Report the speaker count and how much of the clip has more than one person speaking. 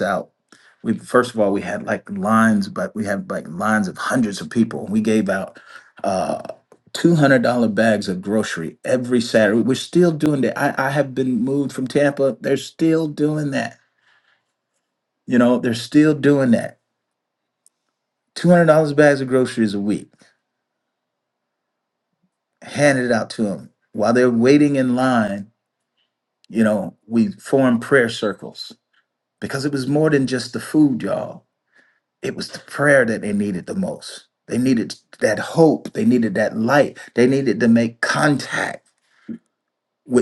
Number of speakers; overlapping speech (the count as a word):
one, no overlap